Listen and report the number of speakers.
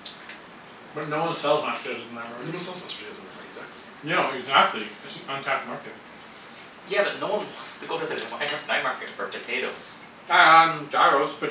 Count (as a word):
four